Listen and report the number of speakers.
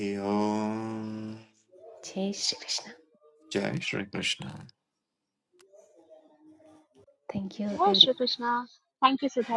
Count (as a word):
three